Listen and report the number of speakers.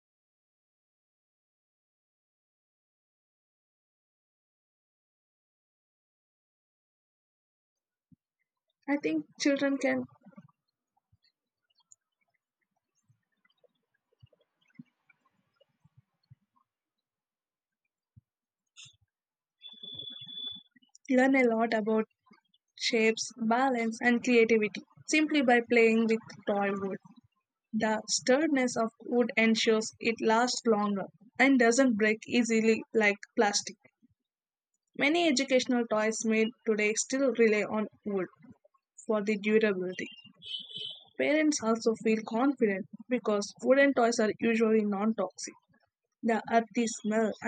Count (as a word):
one